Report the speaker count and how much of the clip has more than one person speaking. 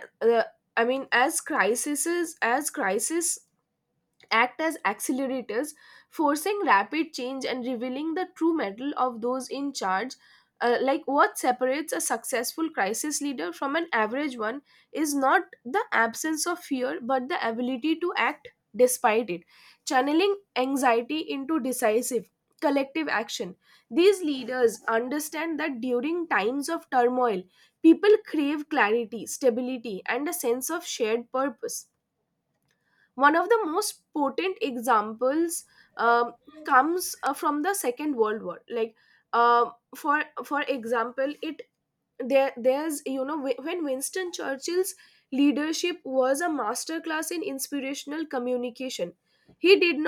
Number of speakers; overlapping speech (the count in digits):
1, no overlap